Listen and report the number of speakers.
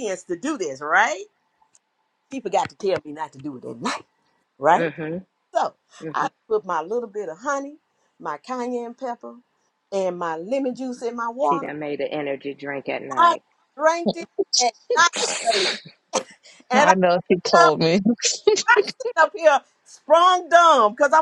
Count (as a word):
three